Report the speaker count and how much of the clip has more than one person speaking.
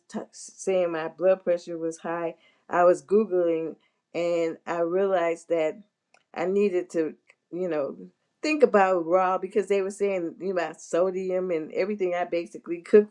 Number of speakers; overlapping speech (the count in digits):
1, no overlap